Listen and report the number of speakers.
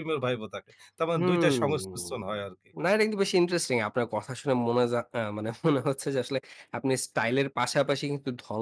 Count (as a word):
two